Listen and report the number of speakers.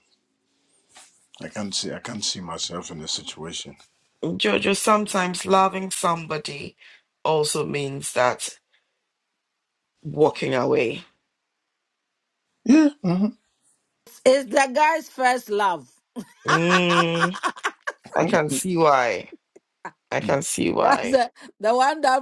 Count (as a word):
three